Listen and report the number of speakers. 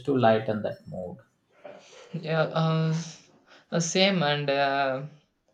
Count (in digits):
2